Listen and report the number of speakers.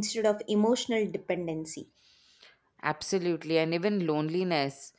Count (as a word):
two